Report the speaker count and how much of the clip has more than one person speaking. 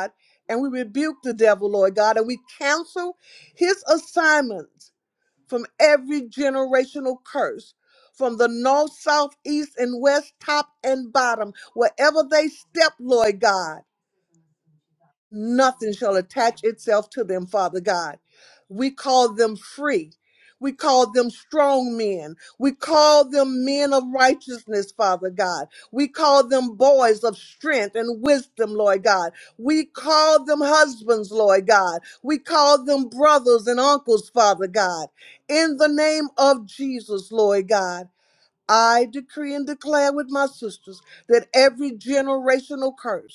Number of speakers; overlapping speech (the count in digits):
1, no overlap